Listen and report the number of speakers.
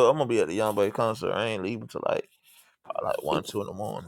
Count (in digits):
1